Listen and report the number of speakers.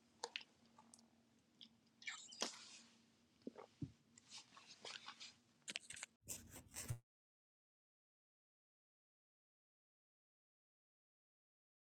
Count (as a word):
zero